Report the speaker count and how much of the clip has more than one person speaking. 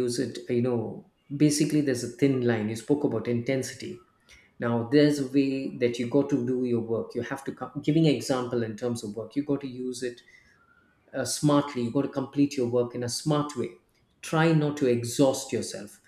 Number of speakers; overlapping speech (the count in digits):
1, no overlap